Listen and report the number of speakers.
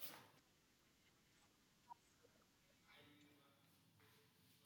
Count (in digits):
0